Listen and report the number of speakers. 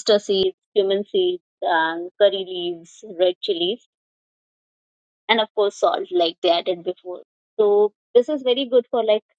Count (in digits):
1